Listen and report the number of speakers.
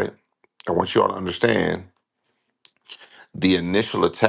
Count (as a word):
one